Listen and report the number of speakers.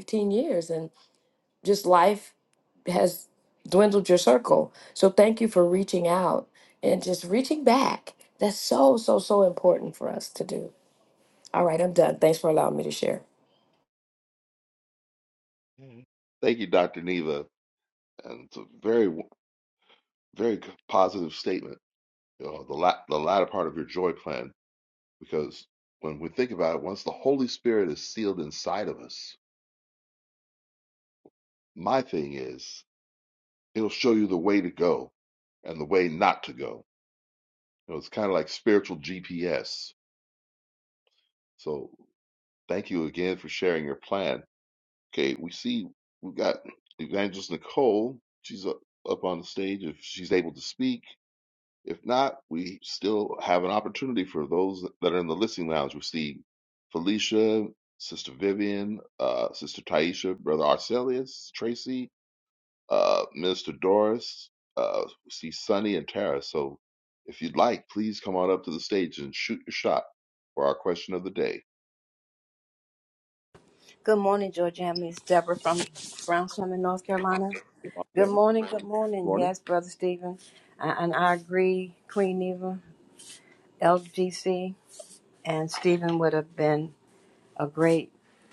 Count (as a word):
three